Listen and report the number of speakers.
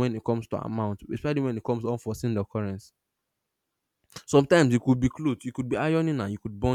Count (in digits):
1